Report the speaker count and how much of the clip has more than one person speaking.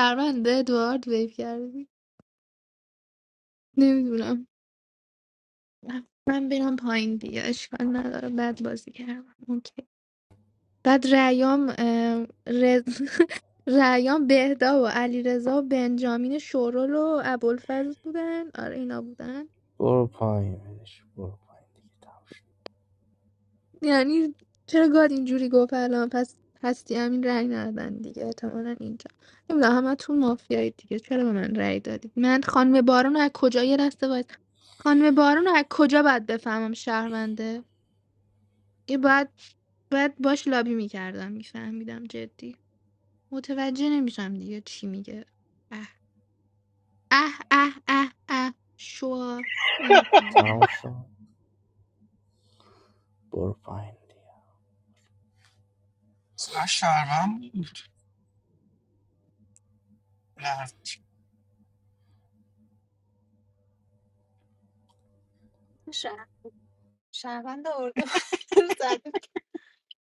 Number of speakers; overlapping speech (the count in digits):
4, under 1%